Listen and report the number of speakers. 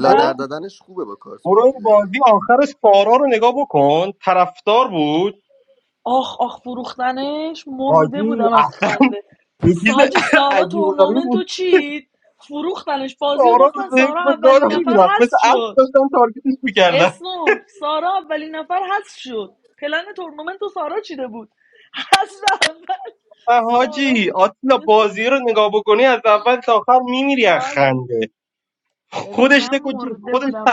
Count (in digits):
3